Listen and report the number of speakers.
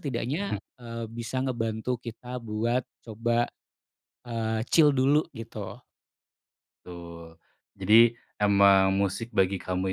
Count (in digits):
2